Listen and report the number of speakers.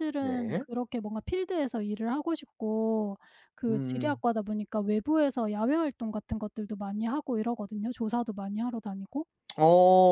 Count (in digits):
2